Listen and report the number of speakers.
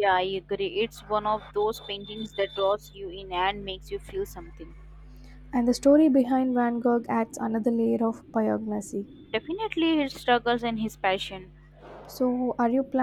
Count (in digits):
2